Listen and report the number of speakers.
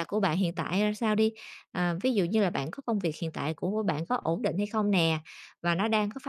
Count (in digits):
1